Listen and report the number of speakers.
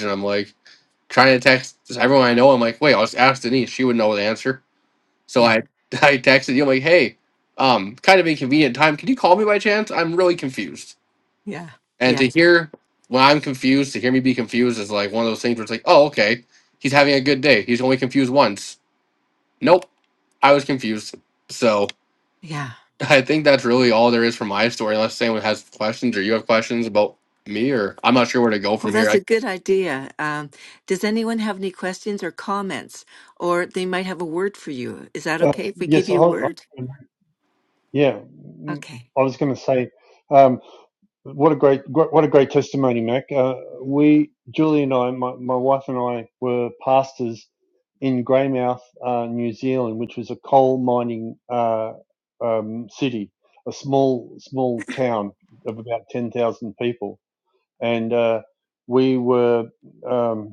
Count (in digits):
3